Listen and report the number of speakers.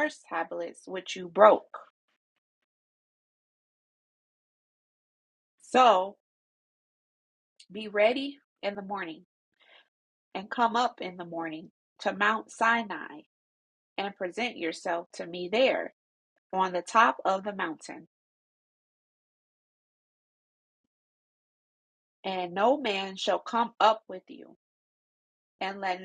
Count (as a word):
one